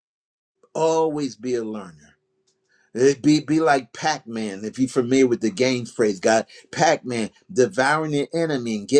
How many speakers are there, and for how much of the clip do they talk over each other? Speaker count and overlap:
one, no overlap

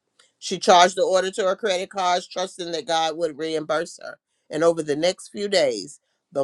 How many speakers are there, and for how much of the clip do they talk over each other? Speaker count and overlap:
one, no overlap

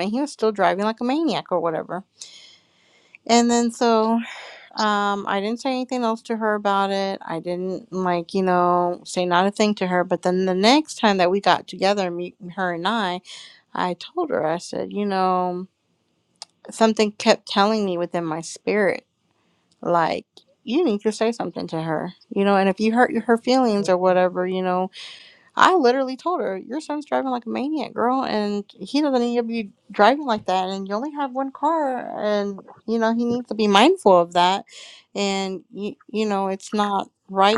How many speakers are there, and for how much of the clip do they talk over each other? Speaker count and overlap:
one, no overlap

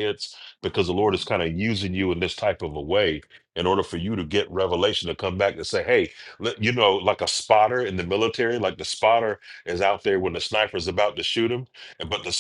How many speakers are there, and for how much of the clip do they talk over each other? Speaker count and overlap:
one, no overlap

